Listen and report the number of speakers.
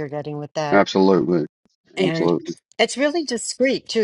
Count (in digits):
2